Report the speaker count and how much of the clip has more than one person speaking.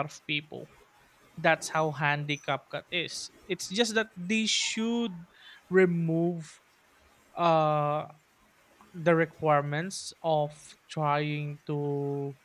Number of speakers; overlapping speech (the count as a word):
one, no overlap